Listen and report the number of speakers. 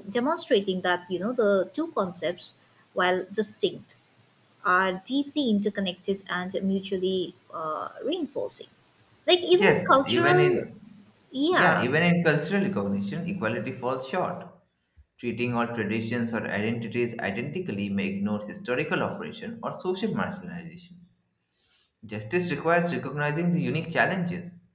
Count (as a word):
two